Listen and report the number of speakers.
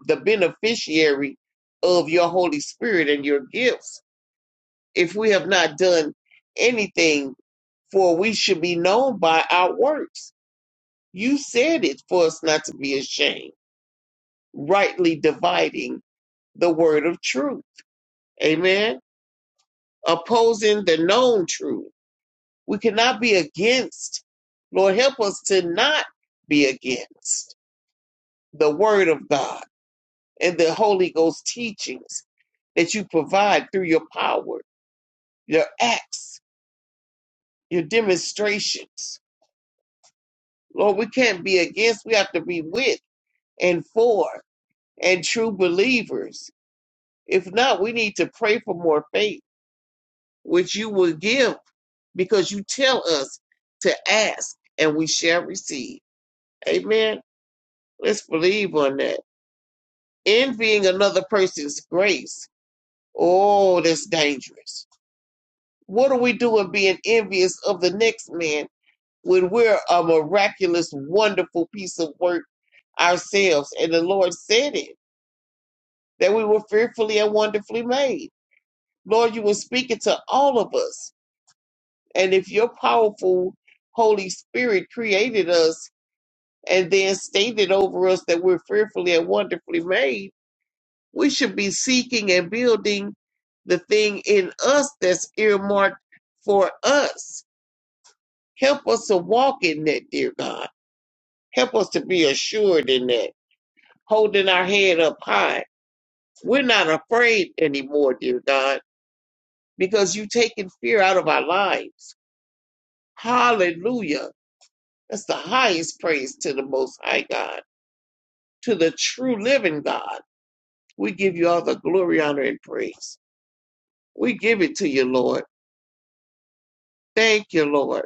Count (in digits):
1